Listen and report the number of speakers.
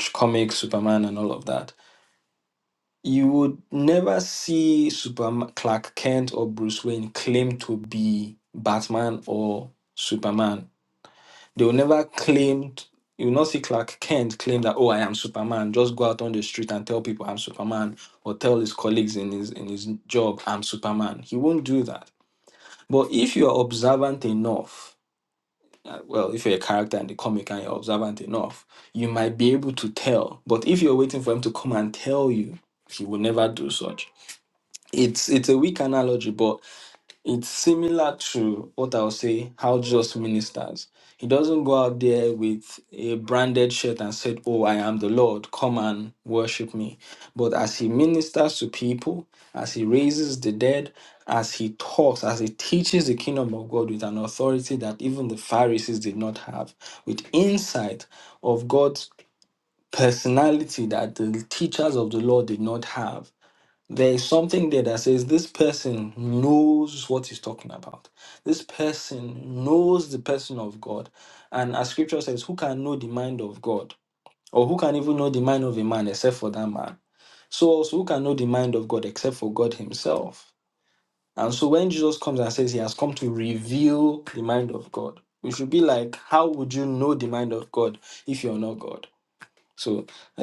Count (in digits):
1